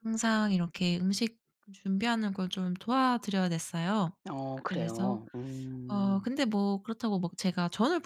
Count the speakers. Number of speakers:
2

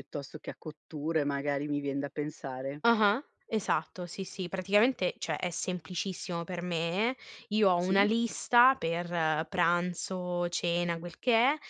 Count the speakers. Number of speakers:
2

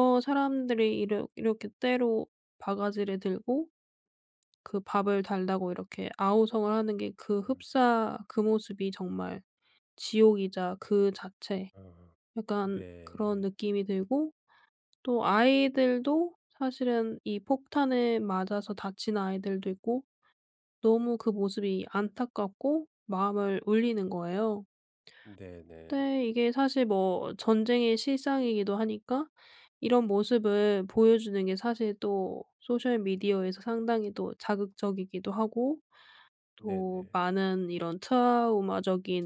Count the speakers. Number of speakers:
2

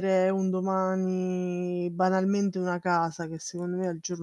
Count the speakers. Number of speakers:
1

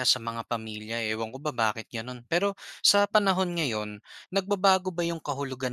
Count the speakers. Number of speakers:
1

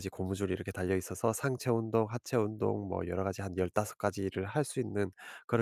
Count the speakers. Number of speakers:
1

